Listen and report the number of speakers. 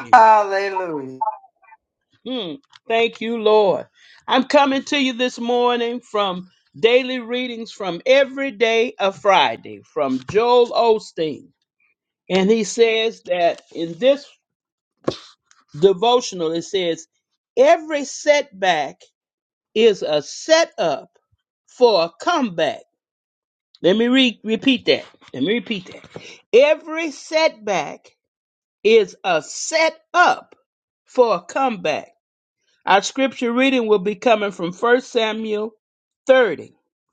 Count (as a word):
two